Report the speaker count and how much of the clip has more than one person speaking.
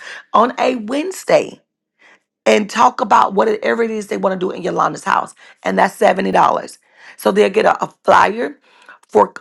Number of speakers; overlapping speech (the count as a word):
one, no overlap